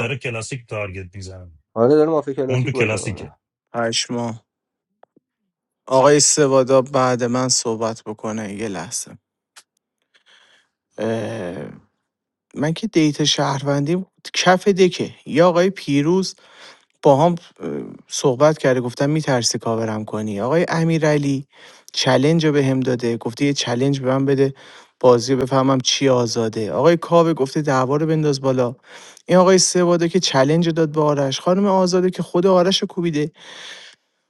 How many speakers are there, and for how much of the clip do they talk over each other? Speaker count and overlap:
3, about 3%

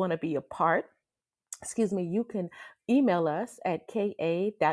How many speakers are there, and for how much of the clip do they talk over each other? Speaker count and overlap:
1, no overlap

